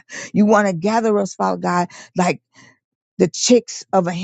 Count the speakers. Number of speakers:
1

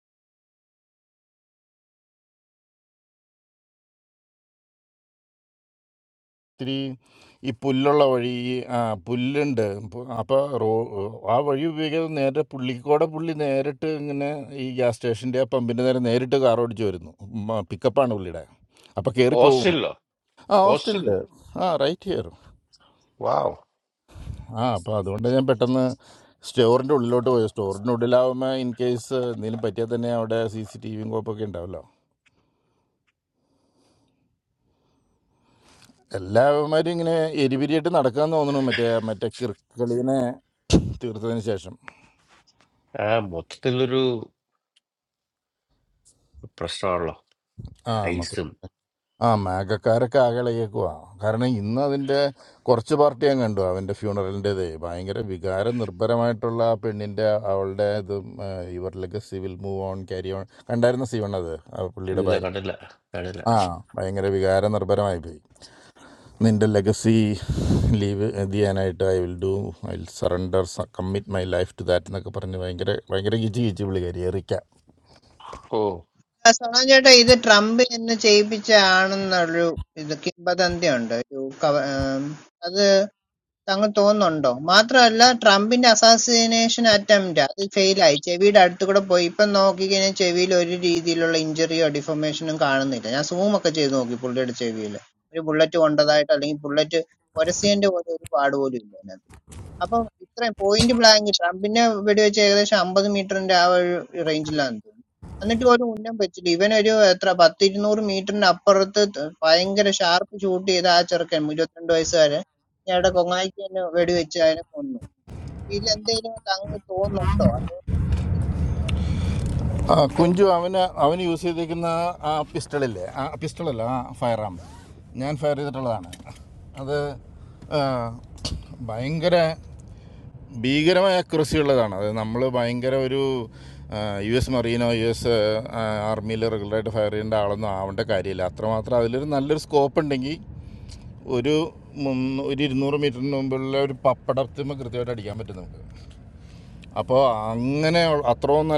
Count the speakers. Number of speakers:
3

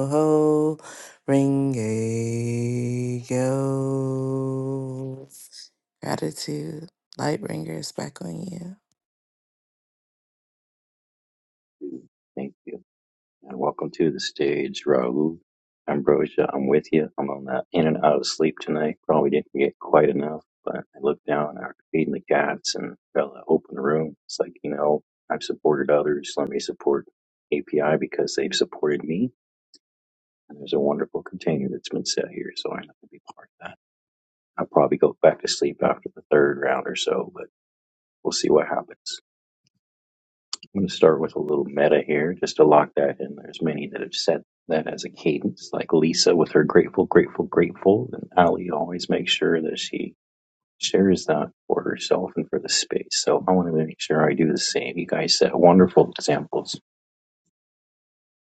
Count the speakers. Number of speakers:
2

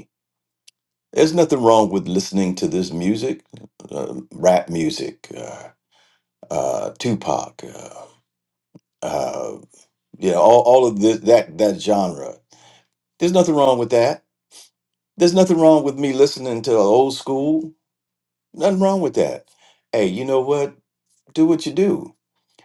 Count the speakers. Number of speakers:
1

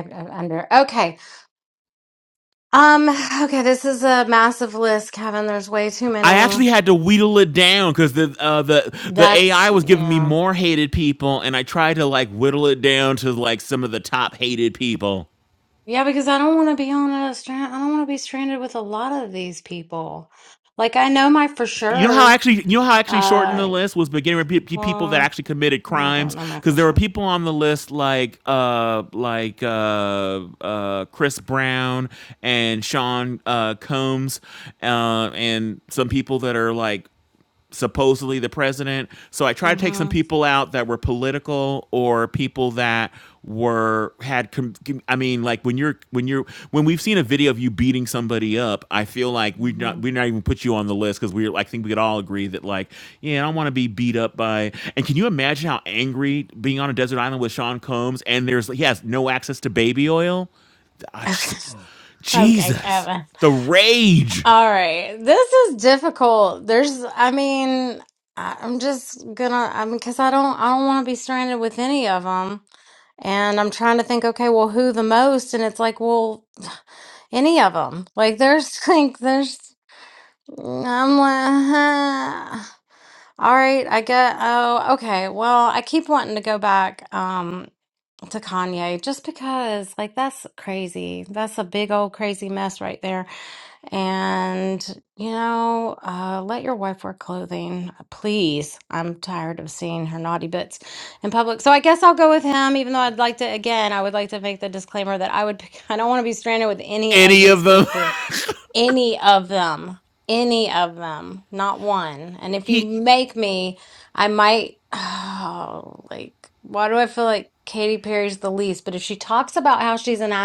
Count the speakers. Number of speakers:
2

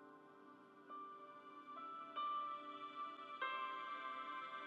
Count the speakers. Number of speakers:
0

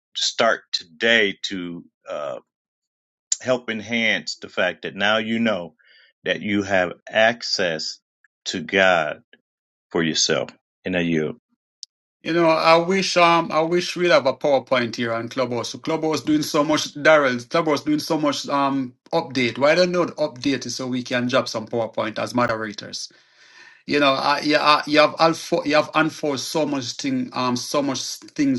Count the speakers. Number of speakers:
2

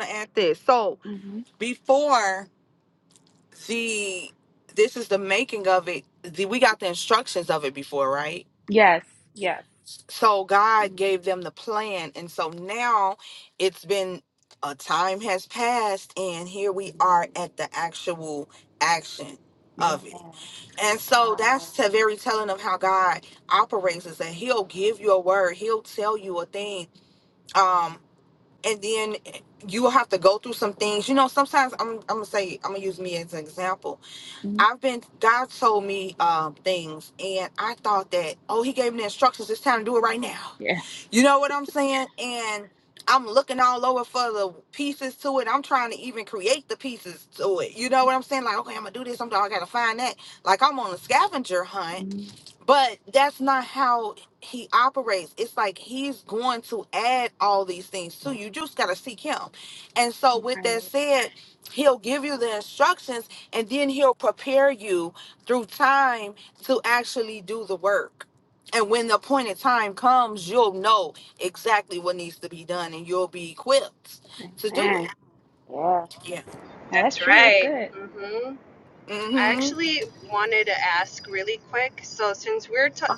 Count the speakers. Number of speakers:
3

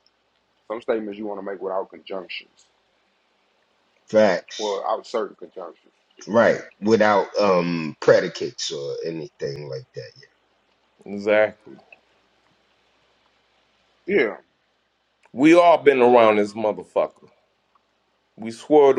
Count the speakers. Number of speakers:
3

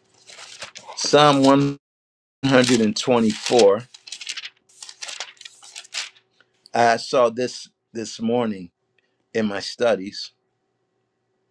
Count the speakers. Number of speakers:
1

